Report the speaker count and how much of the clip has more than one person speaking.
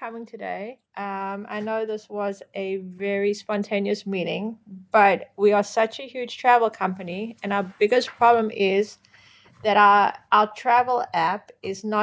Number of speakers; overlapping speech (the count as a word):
one, no overlap